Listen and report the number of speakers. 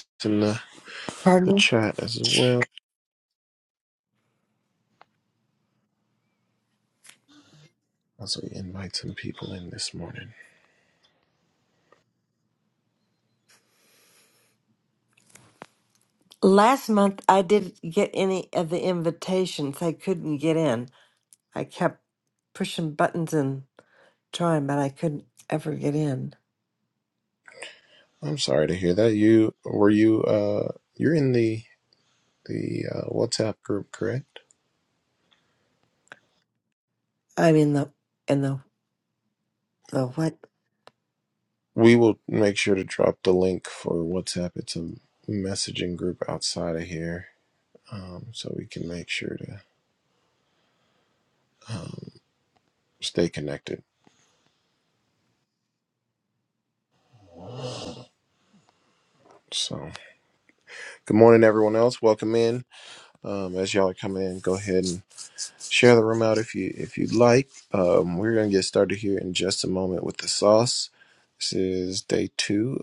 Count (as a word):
two